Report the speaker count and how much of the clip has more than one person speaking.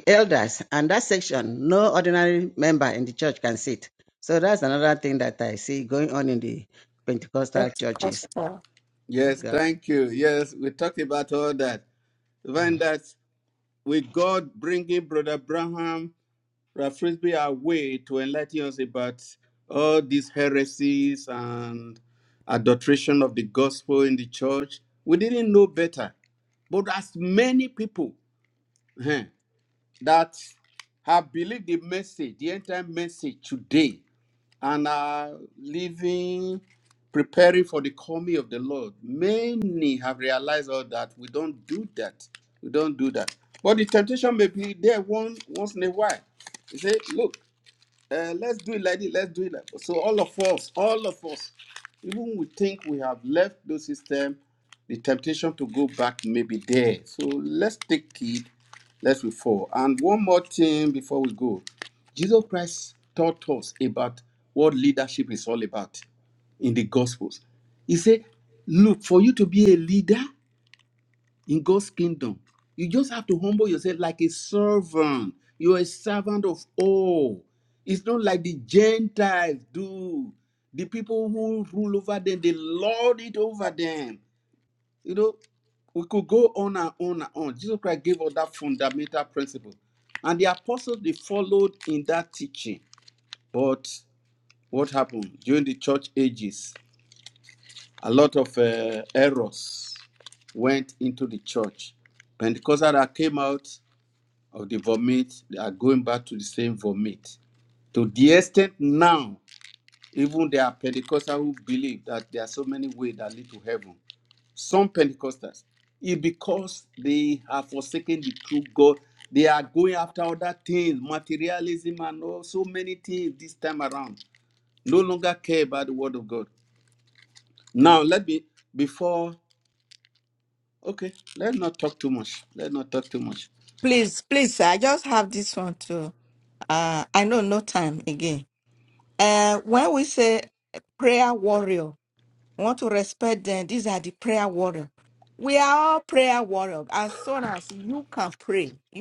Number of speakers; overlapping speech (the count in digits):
3, about 1%